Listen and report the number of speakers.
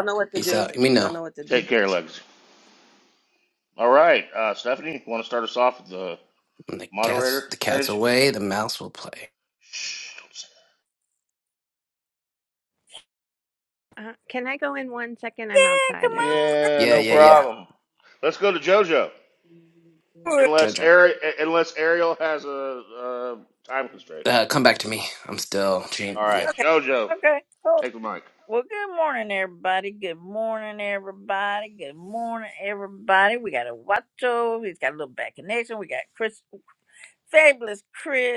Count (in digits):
5